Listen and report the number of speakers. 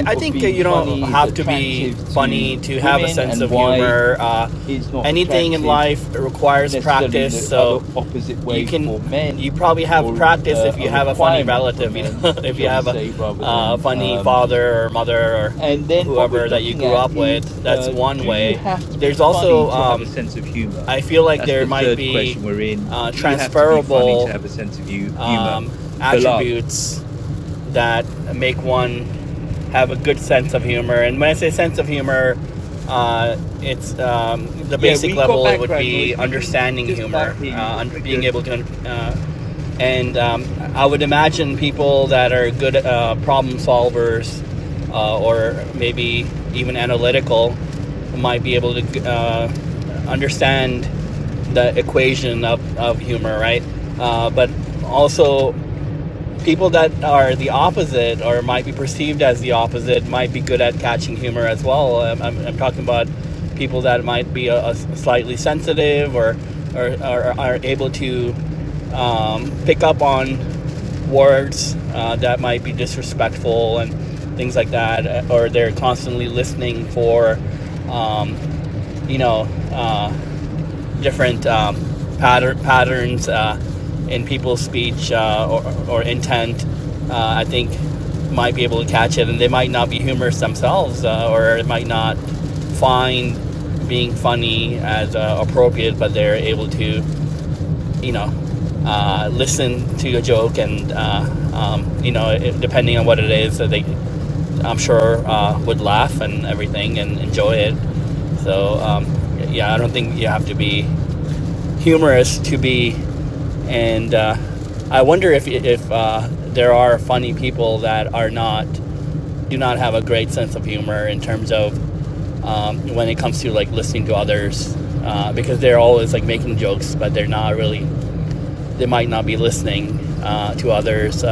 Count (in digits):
2